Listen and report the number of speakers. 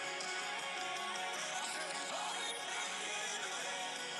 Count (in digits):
0